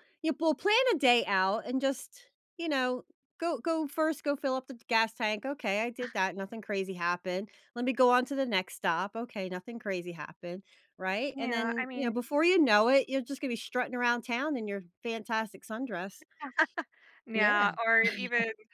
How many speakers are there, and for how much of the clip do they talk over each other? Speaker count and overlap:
2, about 6%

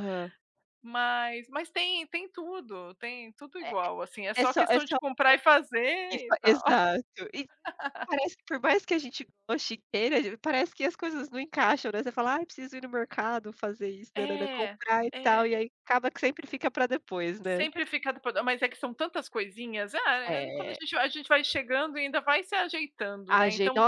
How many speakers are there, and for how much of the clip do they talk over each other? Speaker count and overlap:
2, about 14%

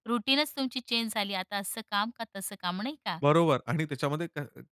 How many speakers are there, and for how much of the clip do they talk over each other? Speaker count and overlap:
2, no overlap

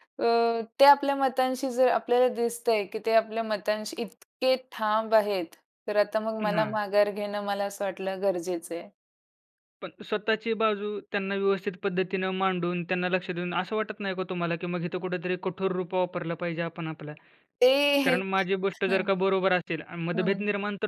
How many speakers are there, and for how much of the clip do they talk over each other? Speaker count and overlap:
2, about 3%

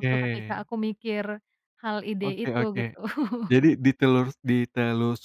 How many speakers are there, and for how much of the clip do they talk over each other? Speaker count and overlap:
2, about 15%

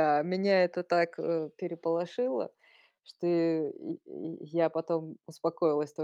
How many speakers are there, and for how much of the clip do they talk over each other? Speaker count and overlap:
1, no overlap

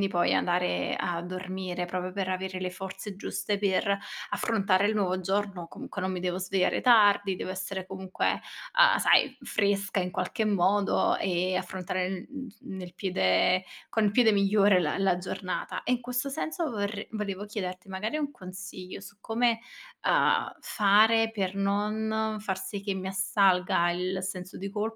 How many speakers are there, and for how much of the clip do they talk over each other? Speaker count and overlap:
1, no overlap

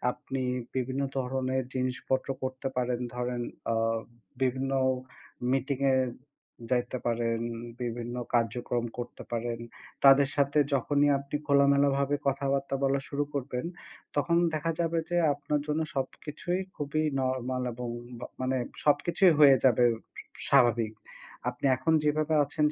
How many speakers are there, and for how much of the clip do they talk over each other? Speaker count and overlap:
1, no overlap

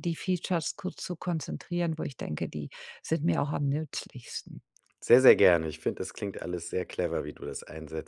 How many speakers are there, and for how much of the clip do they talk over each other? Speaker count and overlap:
2, no overlap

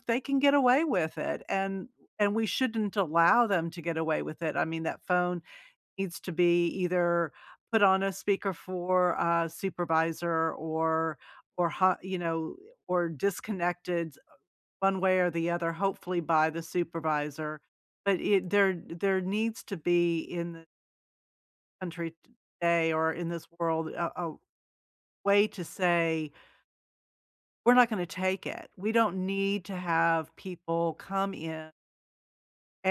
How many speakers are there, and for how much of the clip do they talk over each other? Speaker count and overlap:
1, no overlap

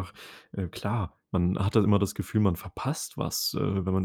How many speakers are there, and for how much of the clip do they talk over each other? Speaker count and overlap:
1, no overlap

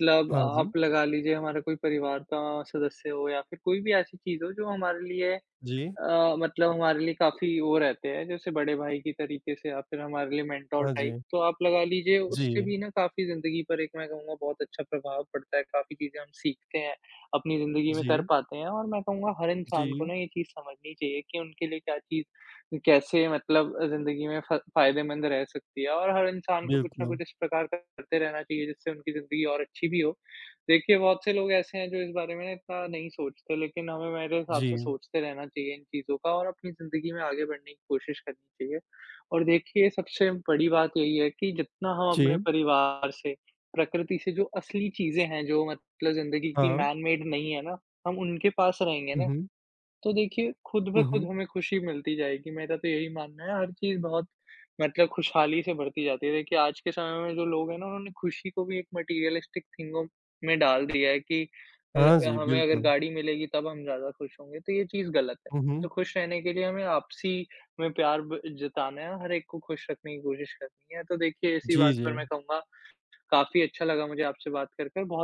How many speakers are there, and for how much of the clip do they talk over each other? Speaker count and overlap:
2, about 7%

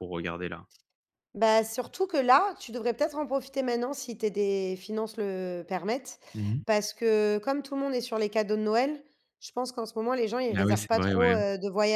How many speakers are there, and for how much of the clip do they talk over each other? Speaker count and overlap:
2, about 8%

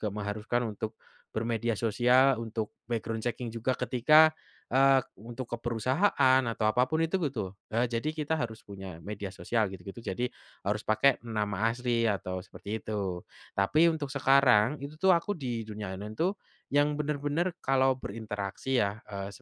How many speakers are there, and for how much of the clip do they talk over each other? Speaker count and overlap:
1, no overlap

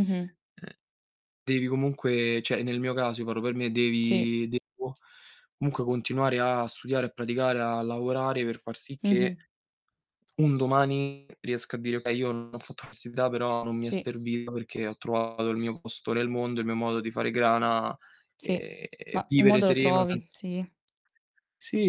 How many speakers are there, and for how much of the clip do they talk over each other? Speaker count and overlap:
2, about 8%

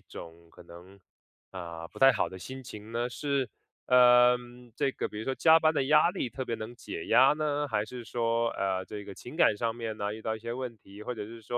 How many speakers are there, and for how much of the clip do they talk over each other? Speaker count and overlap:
1, no overlap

